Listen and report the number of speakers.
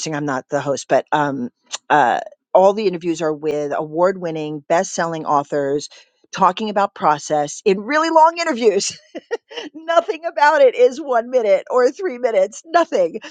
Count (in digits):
1